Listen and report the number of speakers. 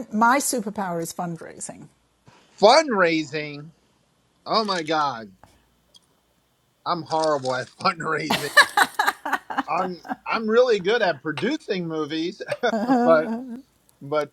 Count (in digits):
2